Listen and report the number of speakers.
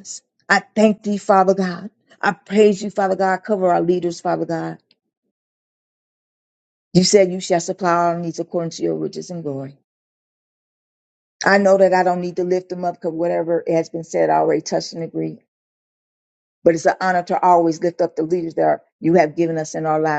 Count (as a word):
one